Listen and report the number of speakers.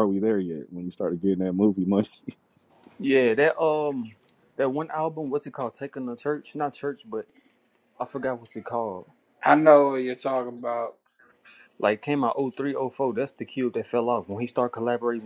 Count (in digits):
3